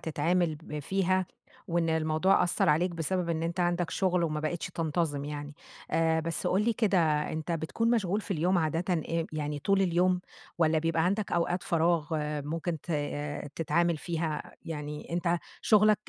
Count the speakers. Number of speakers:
one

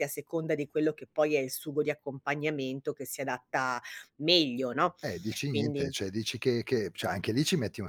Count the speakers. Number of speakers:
two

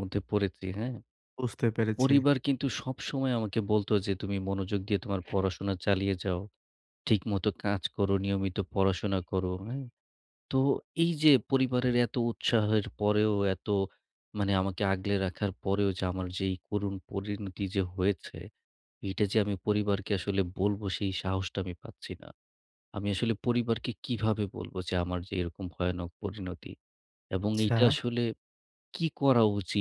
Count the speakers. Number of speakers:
two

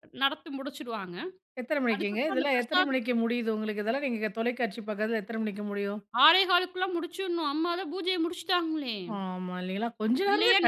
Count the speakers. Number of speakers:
two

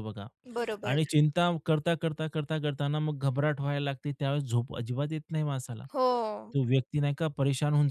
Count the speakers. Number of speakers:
two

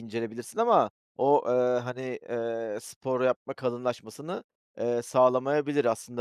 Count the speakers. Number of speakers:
one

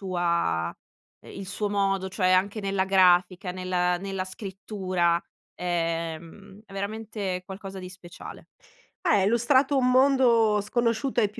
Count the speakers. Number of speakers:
two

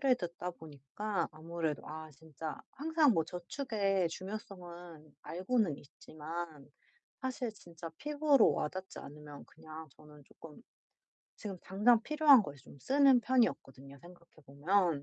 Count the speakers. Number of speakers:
one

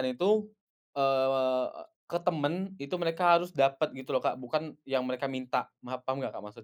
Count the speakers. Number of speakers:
one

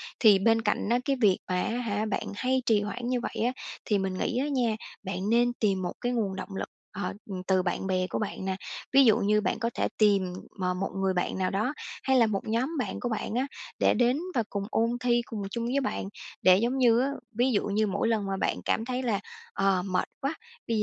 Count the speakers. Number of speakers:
one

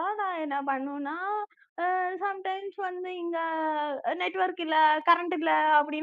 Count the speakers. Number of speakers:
one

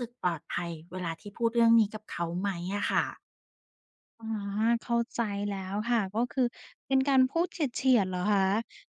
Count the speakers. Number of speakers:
two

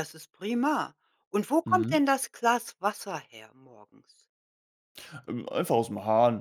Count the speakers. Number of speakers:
two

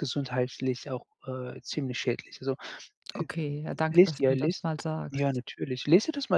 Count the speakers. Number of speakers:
two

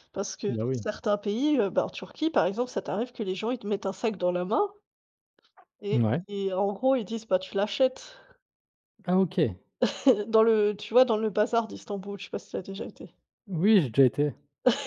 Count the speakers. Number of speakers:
two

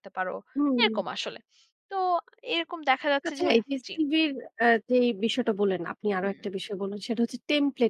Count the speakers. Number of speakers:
two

